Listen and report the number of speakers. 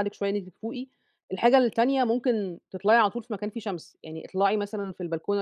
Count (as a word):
one